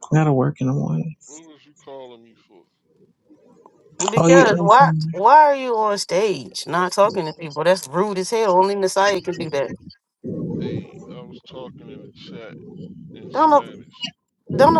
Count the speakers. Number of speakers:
3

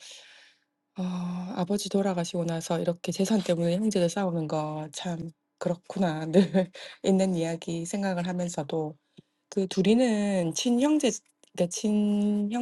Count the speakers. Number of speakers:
1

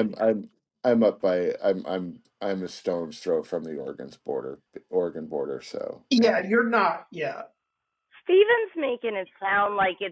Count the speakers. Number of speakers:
3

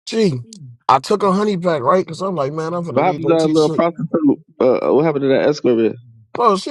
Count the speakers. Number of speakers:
2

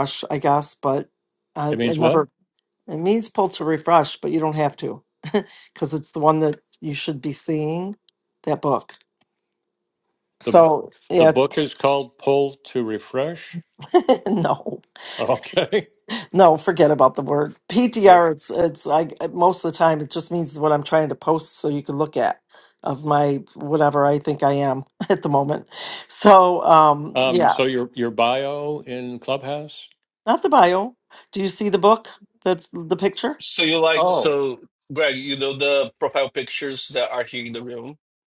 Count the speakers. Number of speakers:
3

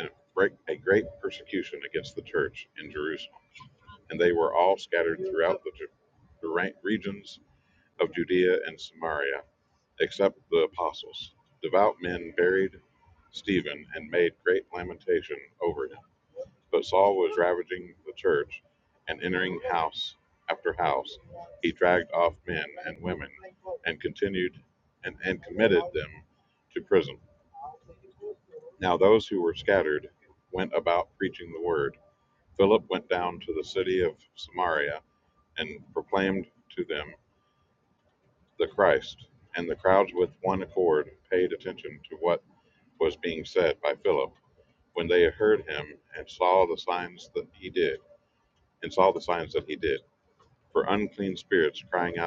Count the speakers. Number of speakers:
1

